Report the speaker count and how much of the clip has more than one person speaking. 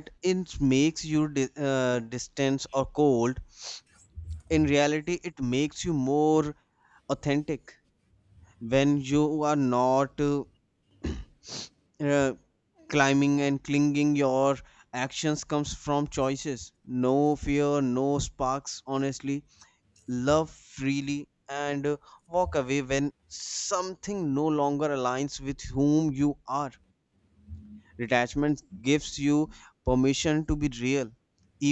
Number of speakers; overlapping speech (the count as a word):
one, no overlap